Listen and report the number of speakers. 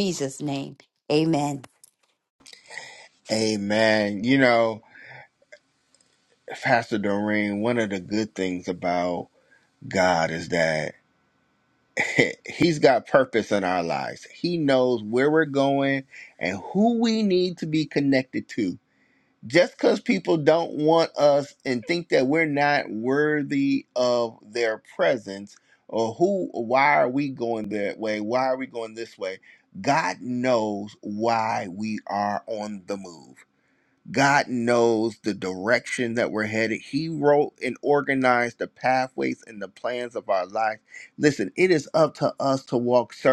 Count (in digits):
2